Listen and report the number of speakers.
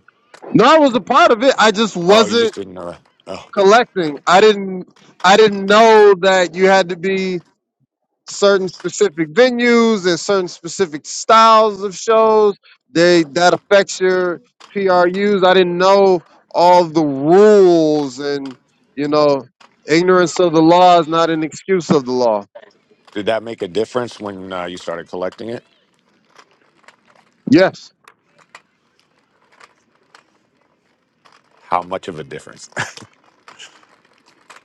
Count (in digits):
2